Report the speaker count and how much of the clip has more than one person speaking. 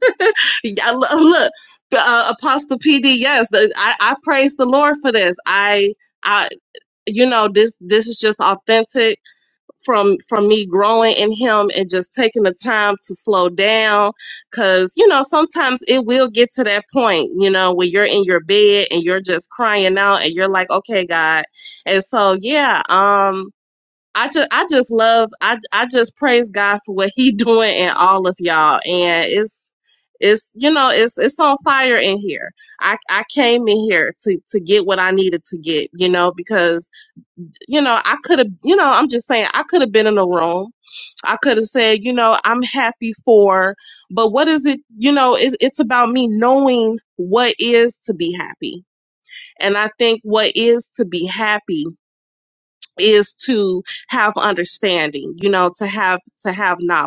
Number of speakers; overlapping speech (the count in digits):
1, no overlap